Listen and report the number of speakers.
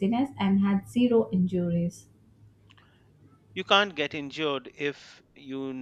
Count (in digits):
2